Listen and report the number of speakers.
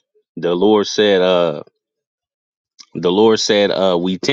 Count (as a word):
one